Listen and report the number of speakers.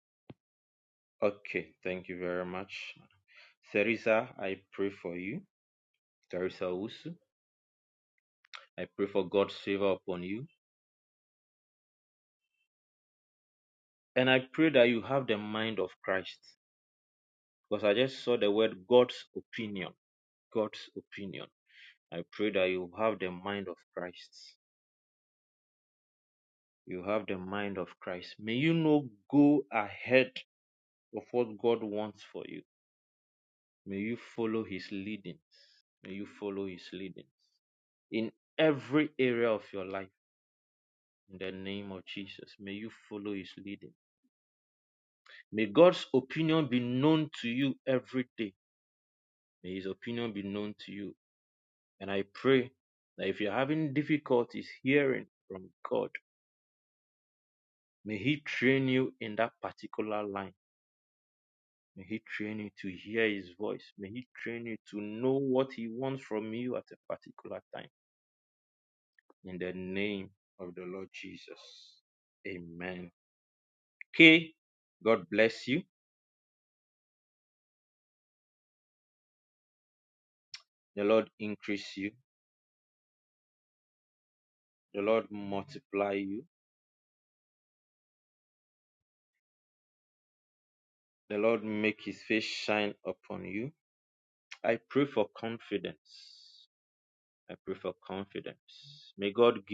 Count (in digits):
1